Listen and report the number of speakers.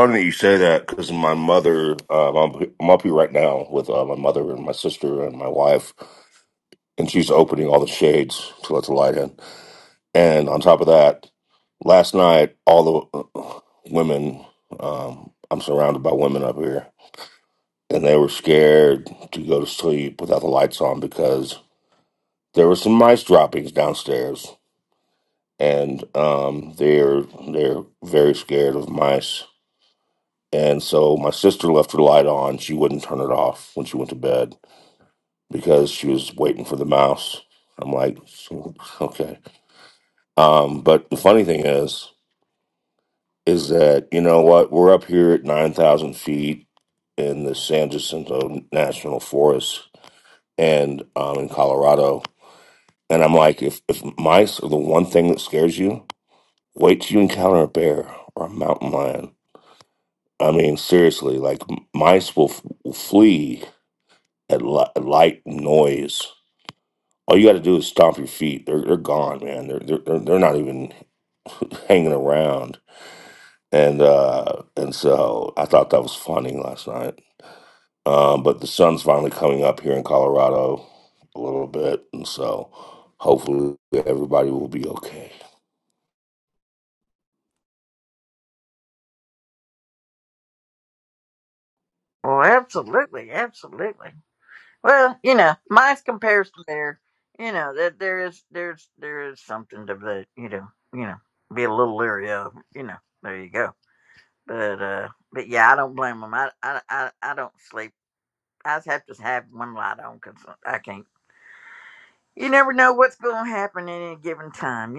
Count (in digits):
2